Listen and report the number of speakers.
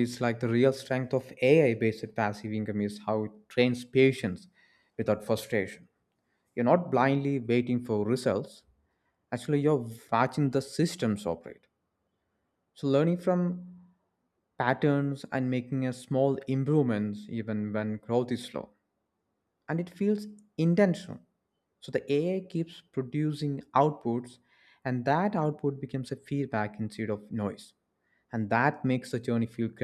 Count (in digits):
1